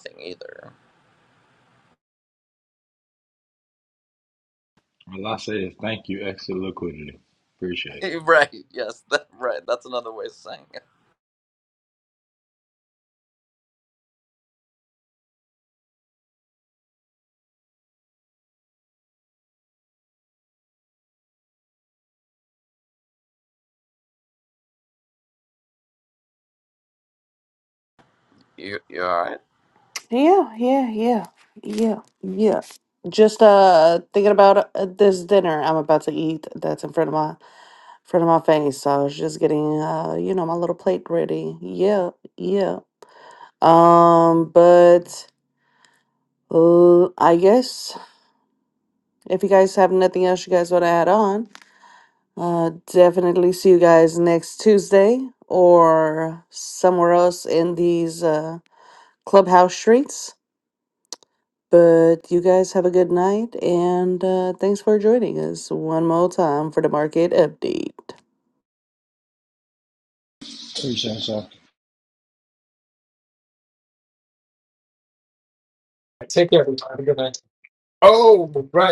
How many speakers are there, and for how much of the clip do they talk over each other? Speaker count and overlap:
four, no overlap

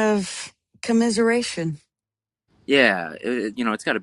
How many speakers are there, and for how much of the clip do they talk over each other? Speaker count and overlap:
two, no overlap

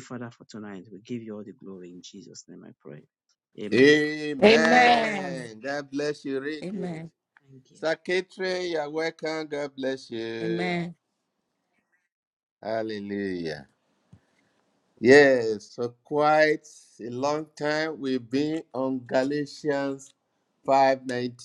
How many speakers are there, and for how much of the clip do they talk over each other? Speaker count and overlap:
three, about 6%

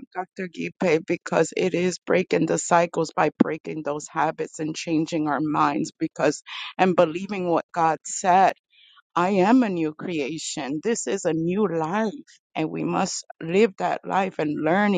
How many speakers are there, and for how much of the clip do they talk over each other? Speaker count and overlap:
one, no overlap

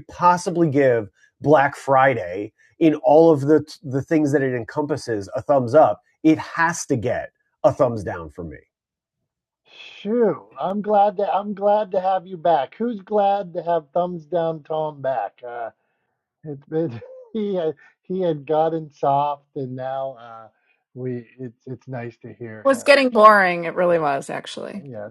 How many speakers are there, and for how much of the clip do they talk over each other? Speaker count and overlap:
three, about 1%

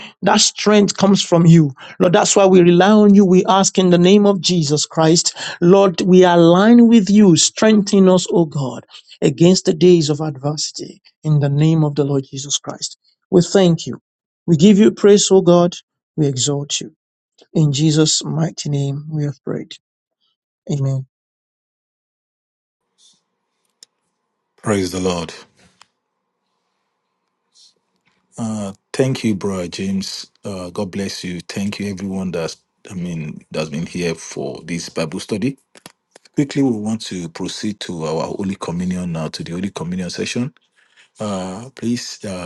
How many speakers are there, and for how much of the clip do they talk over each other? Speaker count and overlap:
two, no overlap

